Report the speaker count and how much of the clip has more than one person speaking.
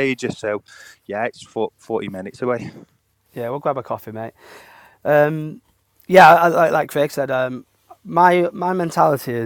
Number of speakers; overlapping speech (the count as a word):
two, no overlap